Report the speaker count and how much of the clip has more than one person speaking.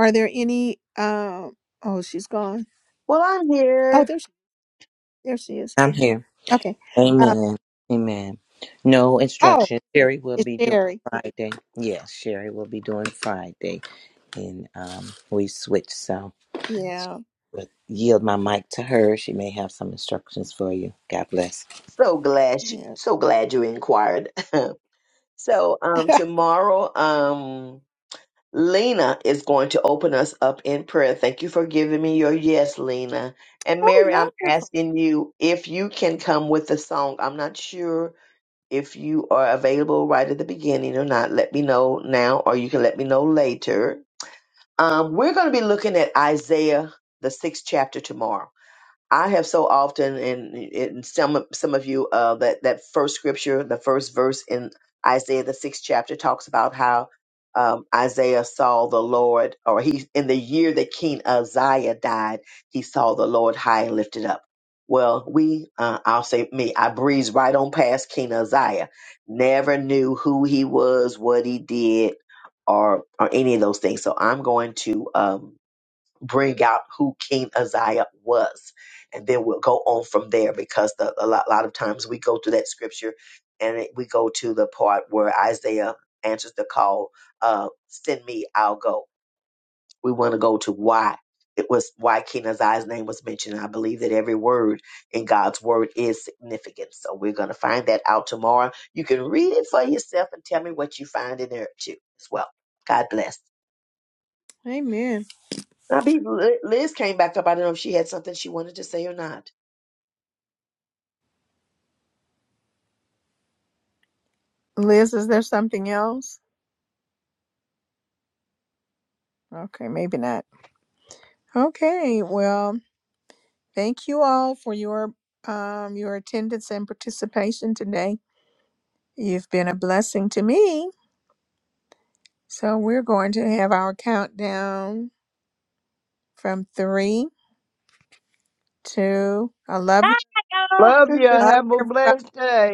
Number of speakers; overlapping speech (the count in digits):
4, about 2%